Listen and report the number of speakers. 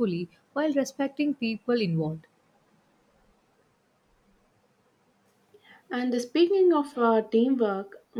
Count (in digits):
2